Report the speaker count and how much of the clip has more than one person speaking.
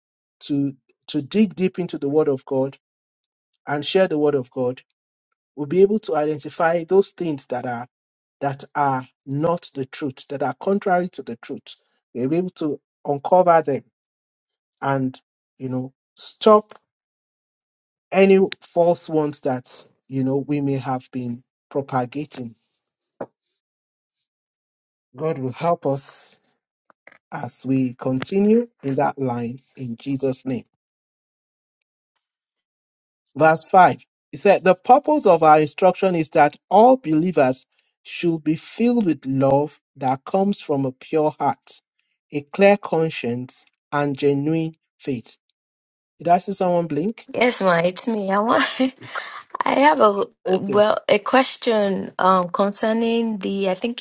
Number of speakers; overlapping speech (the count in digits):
2, about 1%